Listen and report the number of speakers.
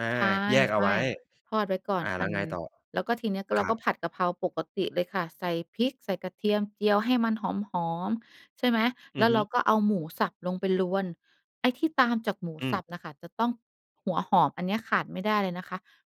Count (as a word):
two